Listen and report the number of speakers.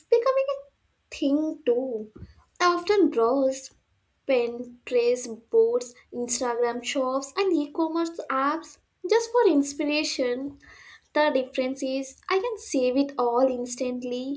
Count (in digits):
1